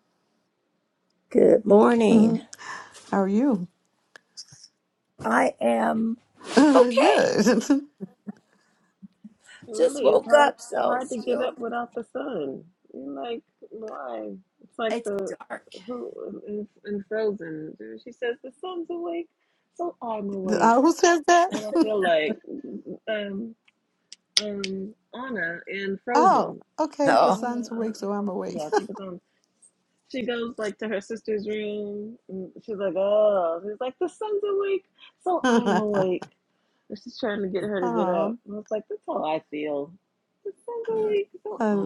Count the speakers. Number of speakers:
three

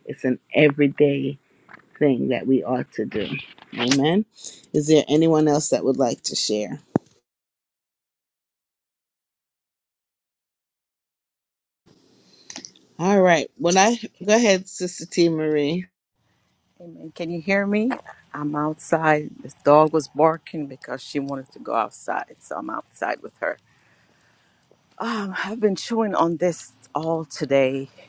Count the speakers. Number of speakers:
two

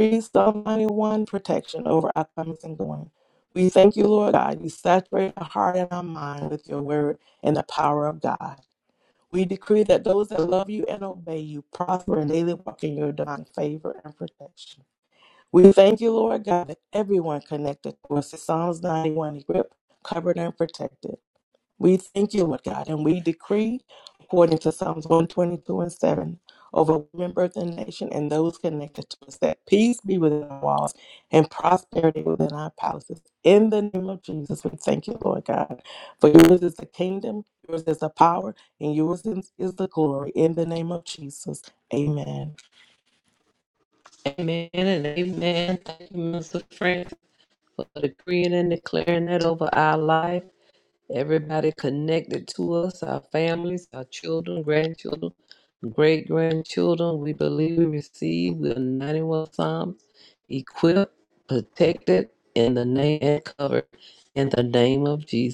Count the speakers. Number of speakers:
two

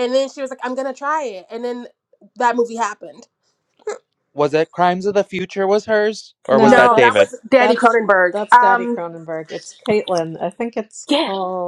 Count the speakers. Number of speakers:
three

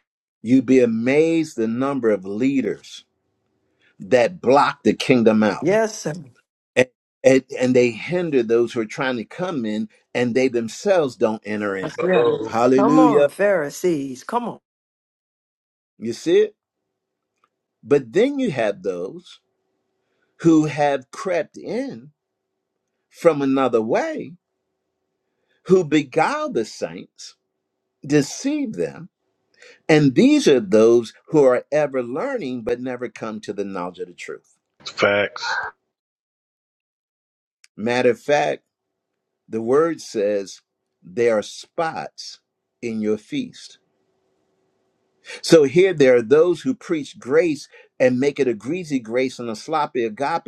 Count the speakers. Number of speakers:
three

